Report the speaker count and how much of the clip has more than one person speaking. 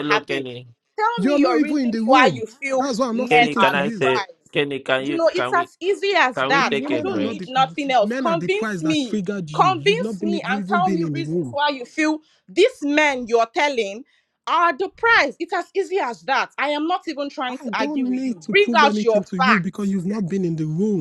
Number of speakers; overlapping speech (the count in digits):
3, about 49%